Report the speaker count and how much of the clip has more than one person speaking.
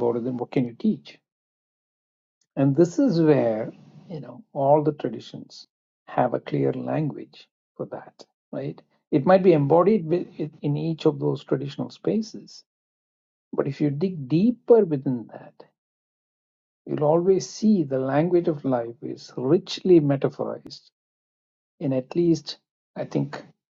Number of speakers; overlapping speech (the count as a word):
one, no overlap